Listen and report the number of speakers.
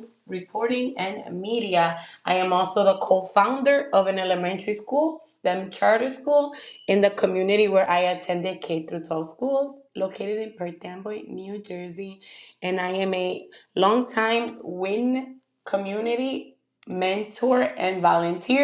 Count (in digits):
1